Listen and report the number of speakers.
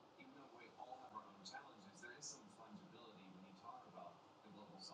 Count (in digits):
0